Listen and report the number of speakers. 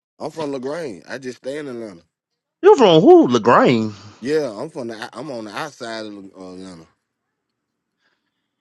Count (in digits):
2